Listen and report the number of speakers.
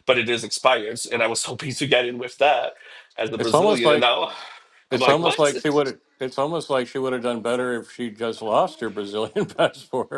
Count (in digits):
2